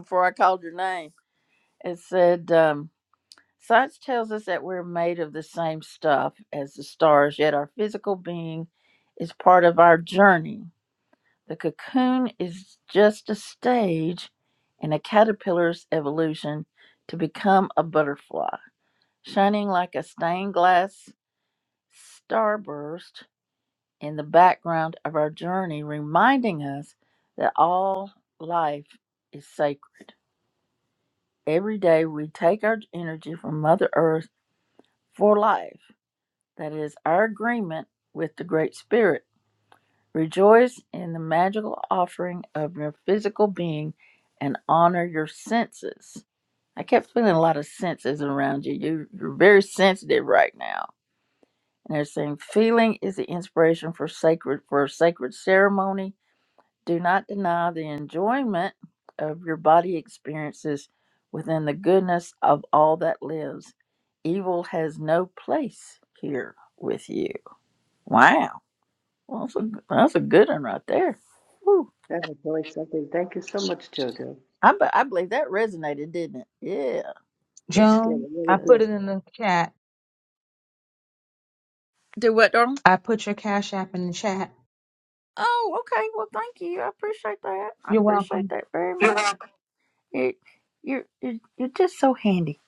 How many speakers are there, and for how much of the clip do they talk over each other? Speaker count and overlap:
three, about 2%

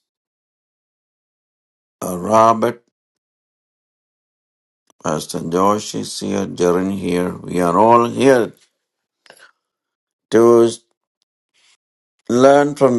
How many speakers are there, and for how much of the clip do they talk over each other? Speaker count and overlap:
one, no overlap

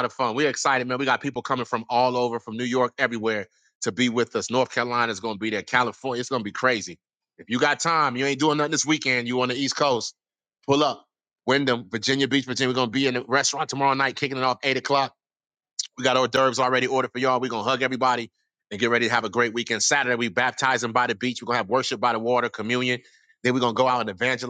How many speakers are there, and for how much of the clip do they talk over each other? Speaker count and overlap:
one, no overlap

